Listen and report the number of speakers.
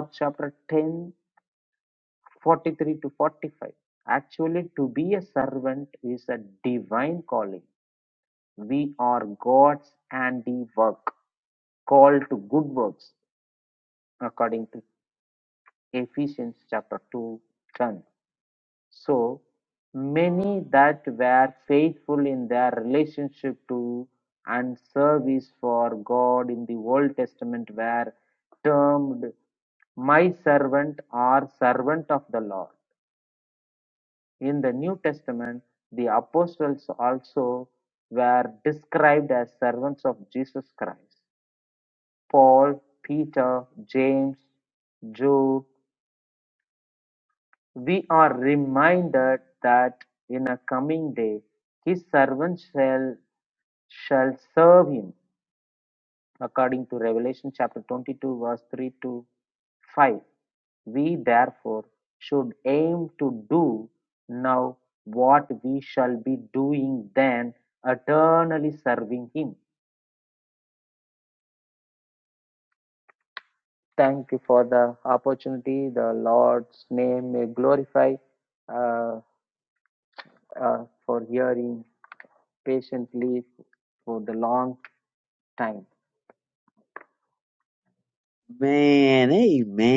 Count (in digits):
2